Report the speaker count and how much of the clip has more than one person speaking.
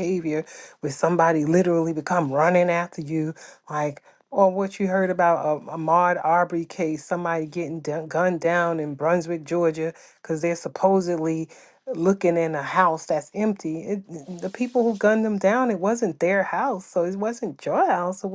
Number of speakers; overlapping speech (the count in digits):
1, no overlap